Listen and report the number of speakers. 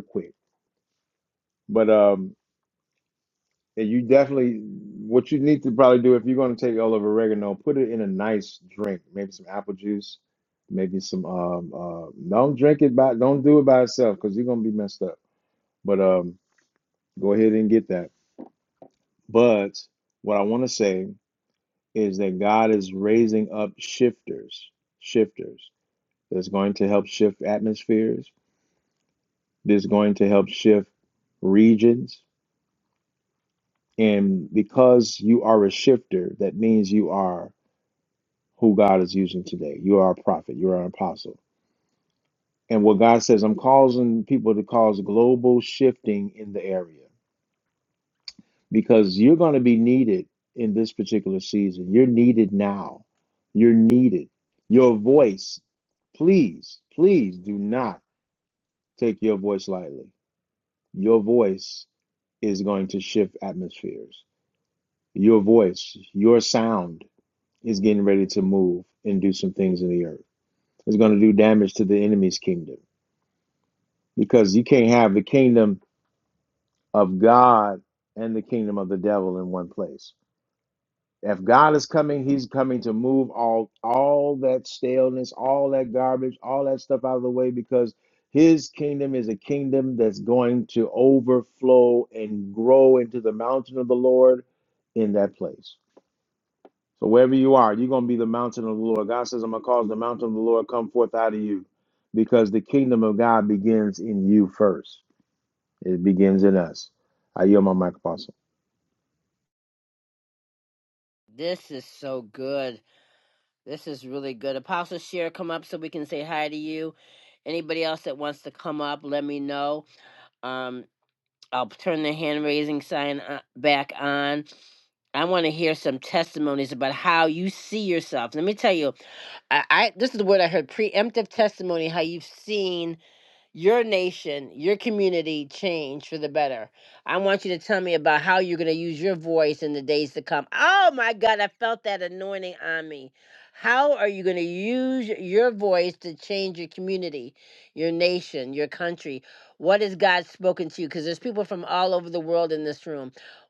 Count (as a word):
two